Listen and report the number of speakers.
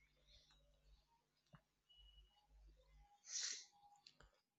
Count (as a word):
zero